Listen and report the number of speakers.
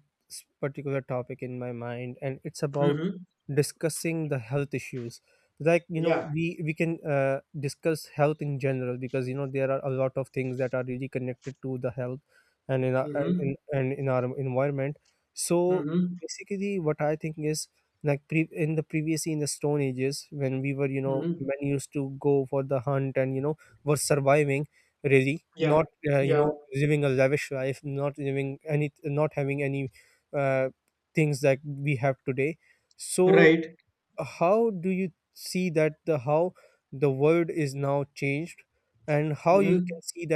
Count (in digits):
2